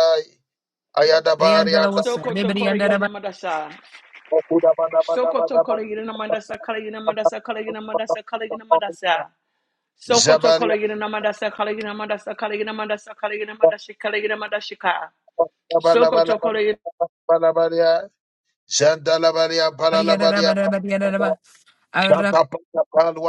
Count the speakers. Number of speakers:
three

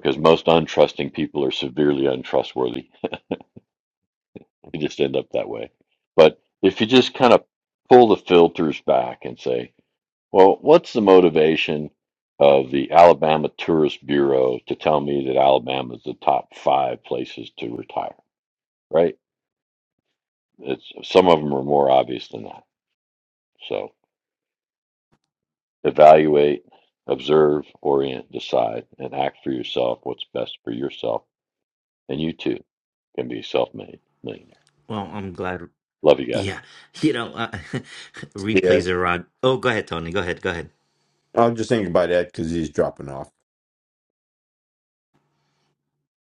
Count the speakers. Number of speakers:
three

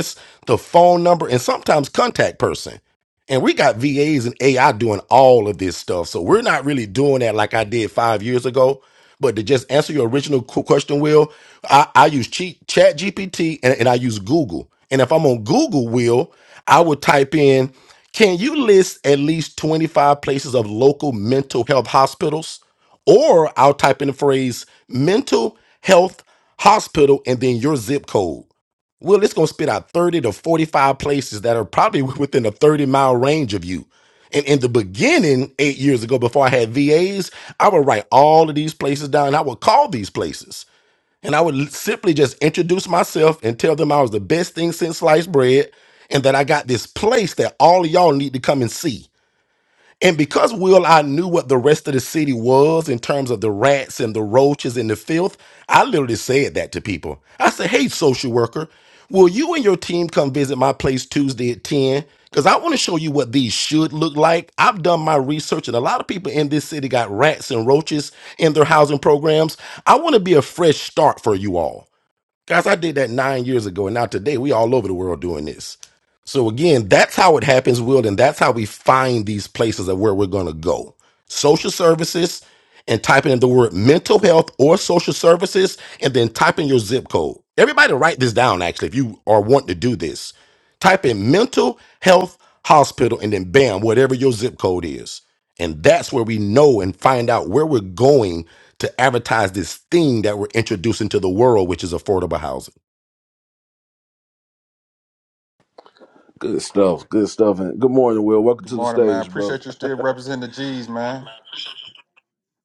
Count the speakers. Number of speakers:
three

